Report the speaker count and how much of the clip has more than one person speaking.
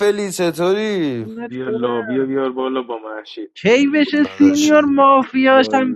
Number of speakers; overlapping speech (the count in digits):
3, about 28%